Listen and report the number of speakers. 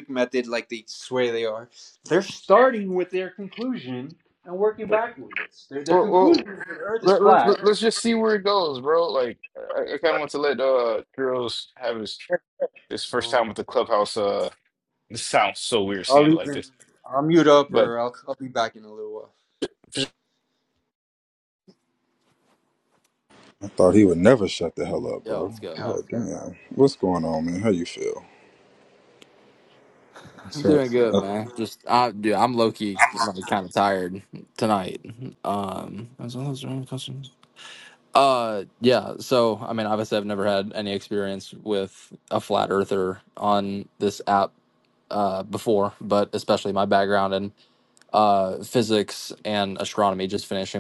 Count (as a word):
four